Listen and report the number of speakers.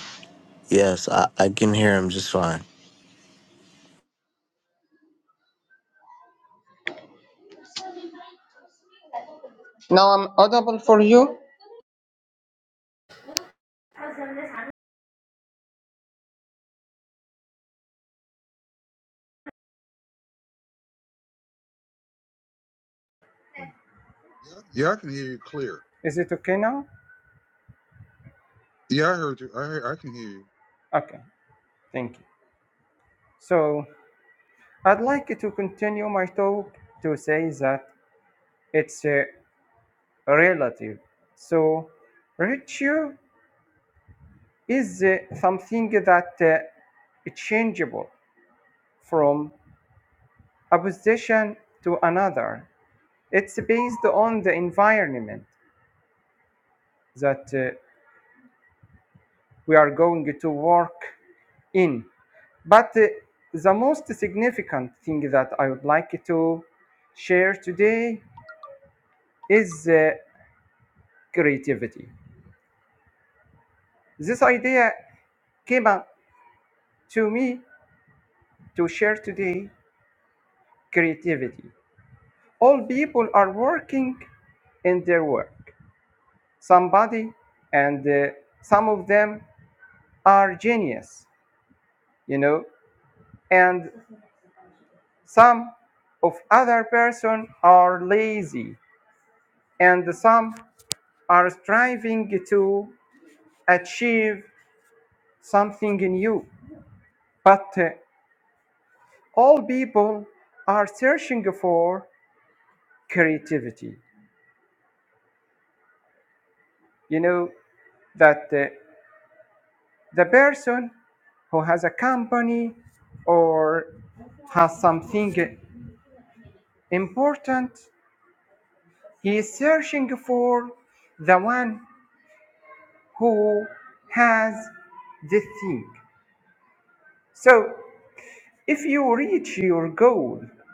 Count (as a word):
three